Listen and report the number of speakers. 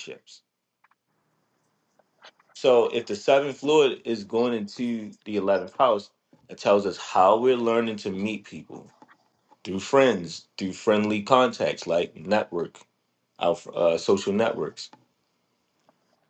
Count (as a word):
one